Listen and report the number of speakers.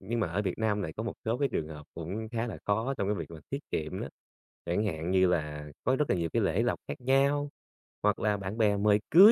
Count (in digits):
1